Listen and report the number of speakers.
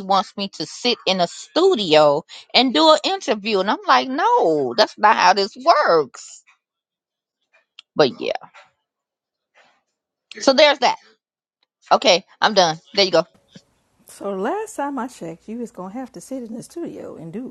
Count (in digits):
2